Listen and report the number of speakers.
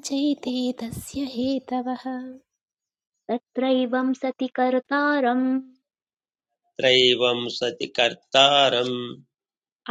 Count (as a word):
three